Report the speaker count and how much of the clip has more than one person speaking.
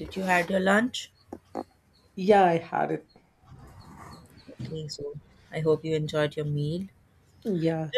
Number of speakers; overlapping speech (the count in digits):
2, no overlap